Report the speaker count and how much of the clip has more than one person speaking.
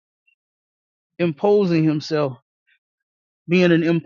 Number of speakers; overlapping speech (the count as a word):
one, no overlap